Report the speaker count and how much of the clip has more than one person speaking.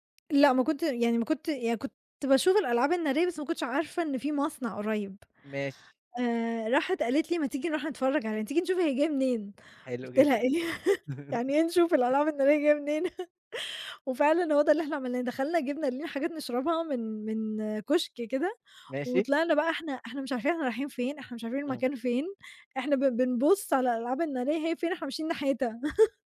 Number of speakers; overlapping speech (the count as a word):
two, about 2%